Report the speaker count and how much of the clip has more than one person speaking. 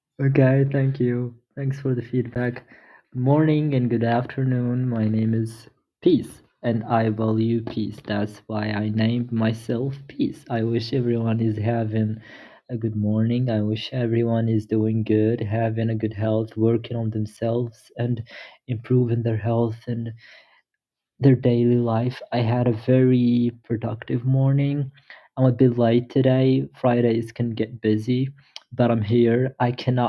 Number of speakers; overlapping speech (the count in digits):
1, no overlap